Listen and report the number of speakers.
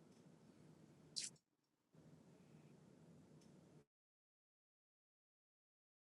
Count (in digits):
0